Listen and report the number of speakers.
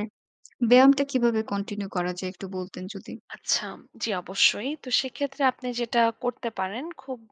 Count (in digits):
2